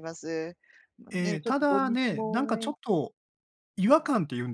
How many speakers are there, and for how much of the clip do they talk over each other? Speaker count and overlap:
2, about 36%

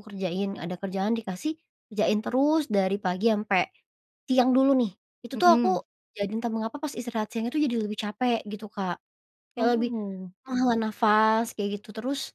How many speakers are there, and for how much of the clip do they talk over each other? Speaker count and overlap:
2, about 6%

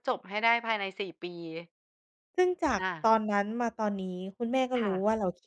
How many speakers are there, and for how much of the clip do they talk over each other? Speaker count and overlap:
2, about 9%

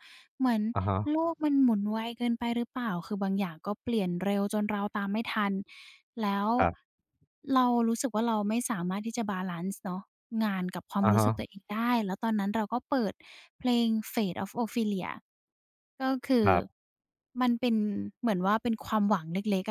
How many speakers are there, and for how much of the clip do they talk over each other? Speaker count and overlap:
2, about 3%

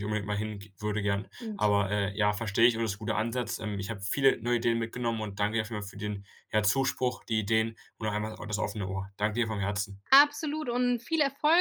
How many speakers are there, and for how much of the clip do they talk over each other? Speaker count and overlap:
2, no overlap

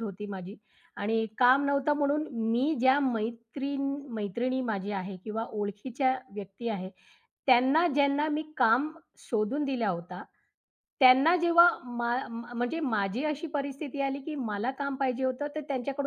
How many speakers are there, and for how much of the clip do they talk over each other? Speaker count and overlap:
1, no overlap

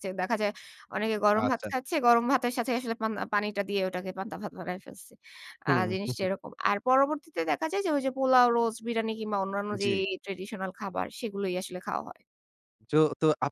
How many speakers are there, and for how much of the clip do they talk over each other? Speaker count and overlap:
2, about 5%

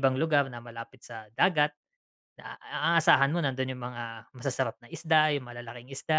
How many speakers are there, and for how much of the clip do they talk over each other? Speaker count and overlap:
1, no overlap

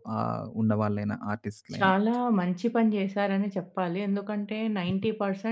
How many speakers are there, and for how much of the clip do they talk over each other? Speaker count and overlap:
2, about 4%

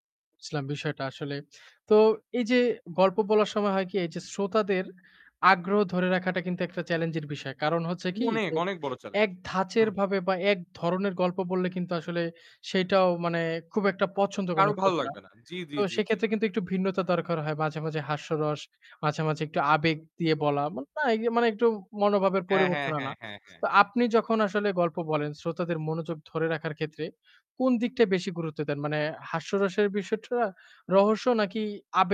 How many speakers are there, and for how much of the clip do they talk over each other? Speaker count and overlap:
2, about 7%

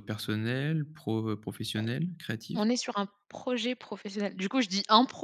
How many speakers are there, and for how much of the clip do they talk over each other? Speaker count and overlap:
2, about 5%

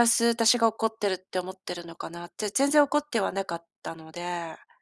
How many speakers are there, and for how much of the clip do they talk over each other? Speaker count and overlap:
1, no overlap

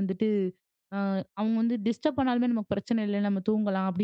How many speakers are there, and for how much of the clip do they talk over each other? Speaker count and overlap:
1, no overlap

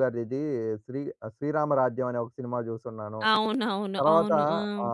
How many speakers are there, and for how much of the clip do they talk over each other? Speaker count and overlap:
2, about 12%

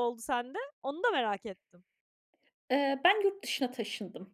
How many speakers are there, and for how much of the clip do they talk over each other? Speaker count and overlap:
2, no overlap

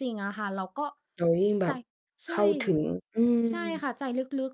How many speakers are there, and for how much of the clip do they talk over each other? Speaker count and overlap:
2, about 17%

